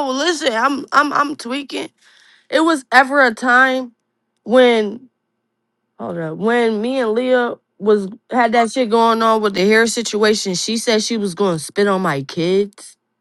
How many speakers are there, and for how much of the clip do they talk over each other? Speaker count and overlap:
1, no overlap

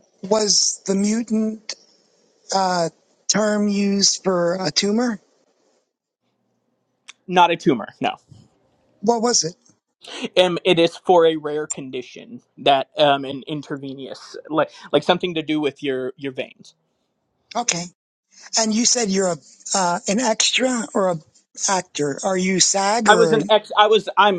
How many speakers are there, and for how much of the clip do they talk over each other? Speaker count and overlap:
2, about 1%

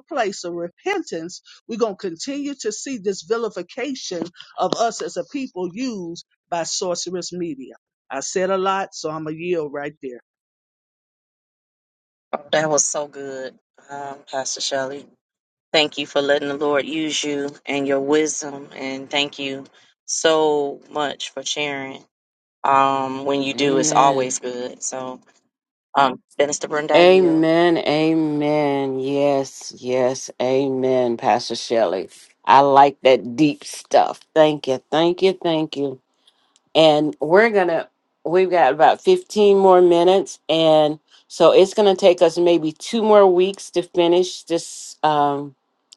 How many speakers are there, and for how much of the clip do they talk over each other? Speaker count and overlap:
3, about 3%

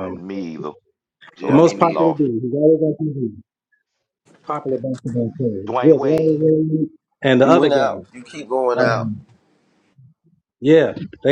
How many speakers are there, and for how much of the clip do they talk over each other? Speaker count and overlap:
3, about 21%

